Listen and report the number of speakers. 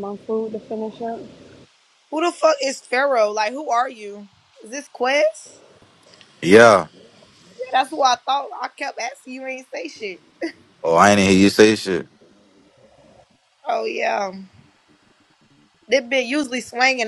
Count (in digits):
3